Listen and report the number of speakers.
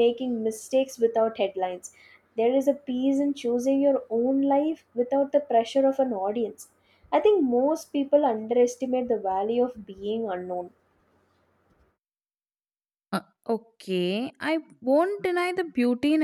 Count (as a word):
two